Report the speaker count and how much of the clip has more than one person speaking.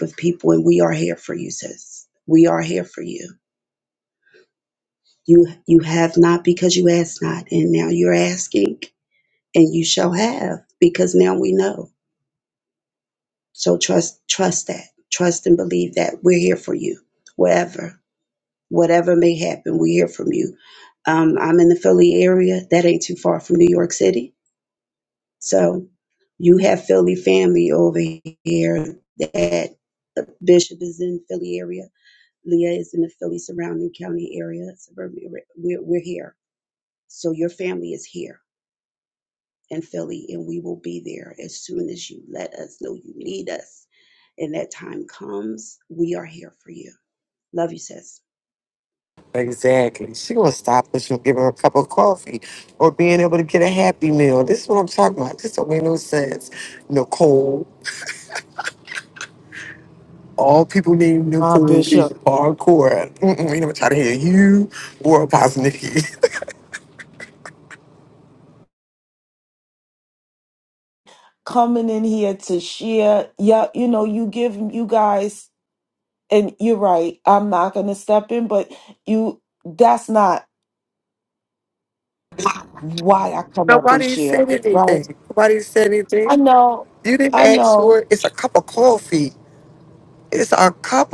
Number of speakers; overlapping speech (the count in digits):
3, about 3%